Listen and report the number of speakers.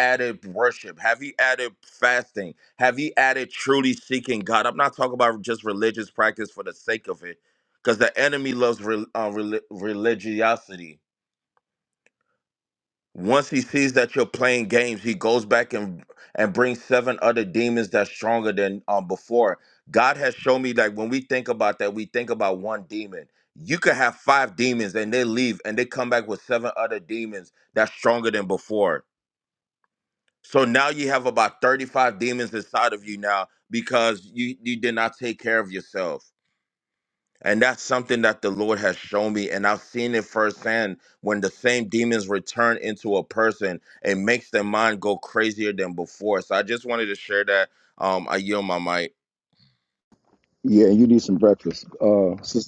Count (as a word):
two